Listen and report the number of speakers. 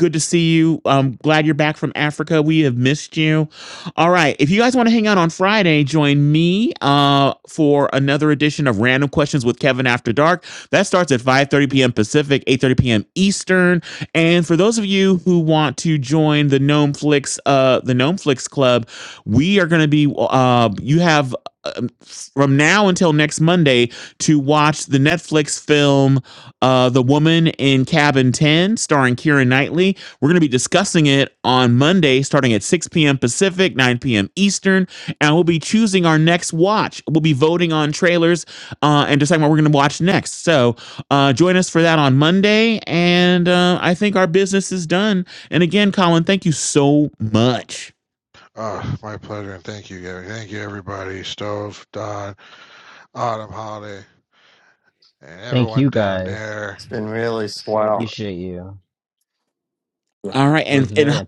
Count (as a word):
four